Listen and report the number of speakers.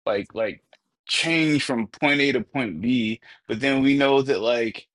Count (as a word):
one